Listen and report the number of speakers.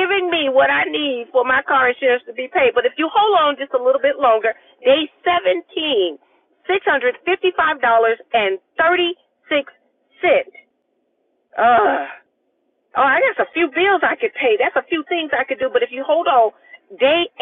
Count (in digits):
1